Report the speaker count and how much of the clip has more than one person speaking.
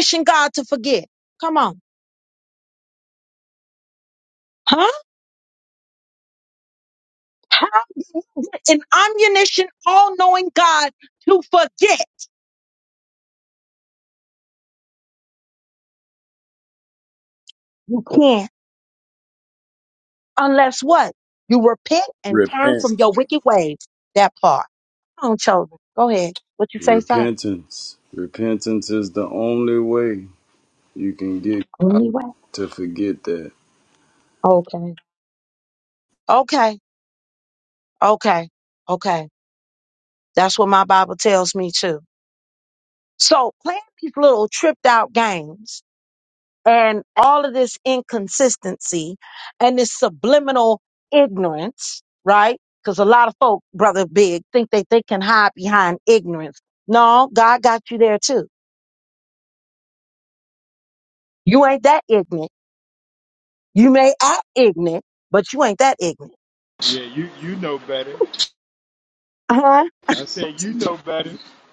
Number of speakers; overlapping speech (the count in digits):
3, about 1%